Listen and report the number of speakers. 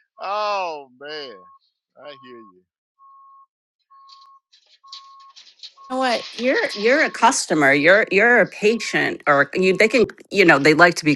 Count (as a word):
two